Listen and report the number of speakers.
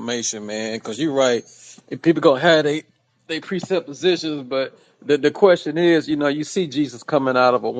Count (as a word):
one